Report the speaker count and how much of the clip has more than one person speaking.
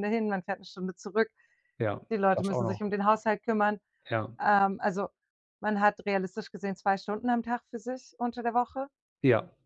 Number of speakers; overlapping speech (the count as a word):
two, about 4%